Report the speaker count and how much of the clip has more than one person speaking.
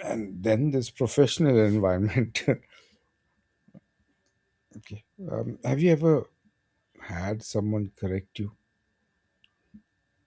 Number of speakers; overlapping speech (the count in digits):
1, no overlap